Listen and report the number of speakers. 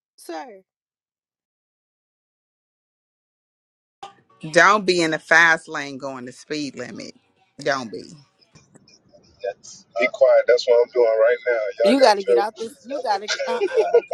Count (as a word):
three